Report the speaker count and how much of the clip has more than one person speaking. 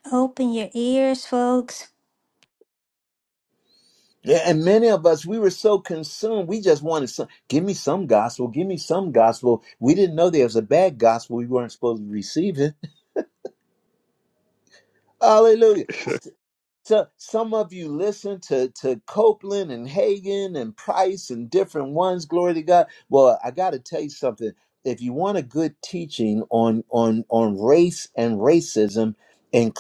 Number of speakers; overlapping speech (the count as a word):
two, no overlap